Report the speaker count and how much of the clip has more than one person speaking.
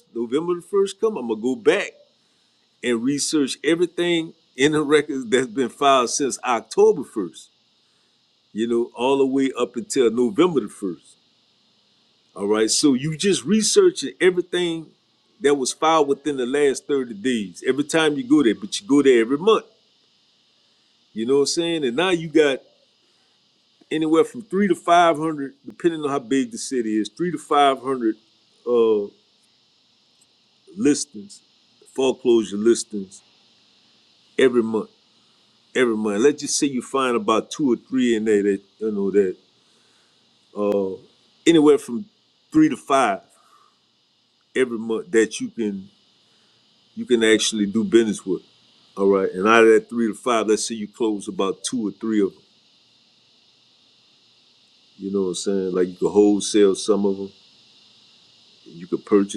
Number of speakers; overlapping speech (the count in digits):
1, no overlap